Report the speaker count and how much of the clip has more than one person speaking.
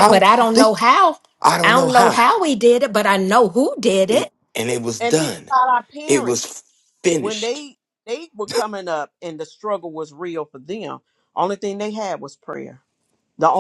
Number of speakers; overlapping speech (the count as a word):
three, about 16%